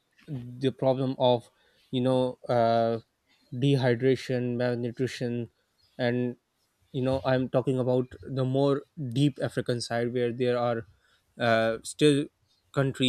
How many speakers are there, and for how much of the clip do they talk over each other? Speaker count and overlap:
1, no overlap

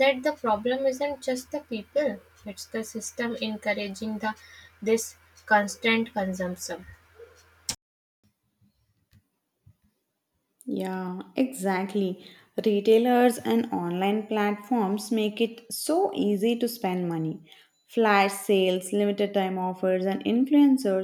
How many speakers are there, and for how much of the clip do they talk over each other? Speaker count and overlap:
2, no overlap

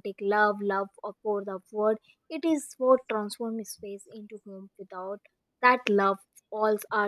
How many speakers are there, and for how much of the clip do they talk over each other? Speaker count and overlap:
1, no overlap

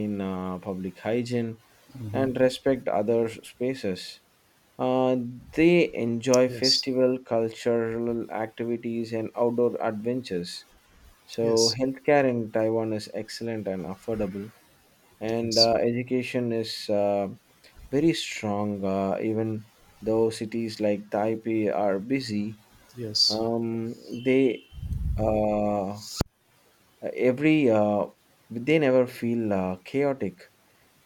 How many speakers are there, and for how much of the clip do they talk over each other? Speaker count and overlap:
2, about 4%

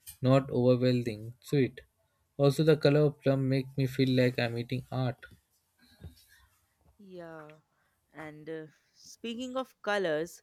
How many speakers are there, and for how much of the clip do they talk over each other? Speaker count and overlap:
2, no overlap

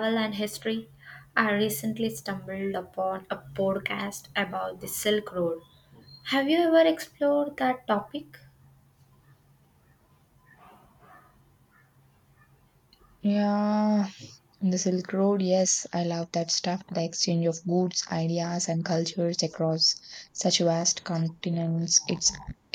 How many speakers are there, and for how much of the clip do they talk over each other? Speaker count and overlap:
2, no overlap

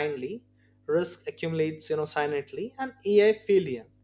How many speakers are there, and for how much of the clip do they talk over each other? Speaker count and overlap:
1, no overlap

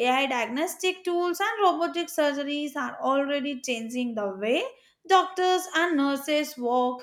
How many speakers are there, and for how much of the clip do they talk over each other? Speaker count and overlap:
1, no overlap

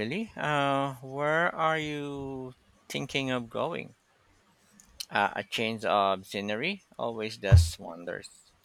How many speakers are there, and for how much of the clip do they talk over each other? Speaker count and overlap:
1, no overlap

